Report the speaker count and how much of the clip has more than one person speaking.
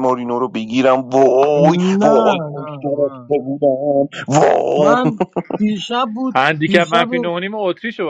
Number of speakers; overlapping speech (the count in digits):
3, about 30%